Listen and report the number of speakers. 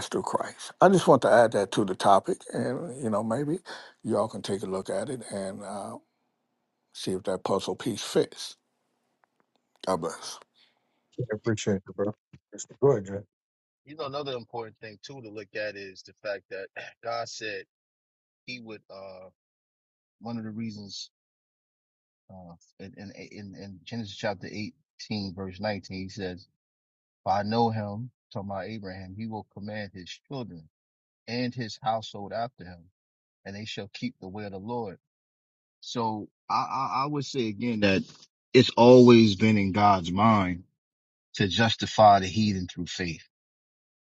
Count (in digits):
3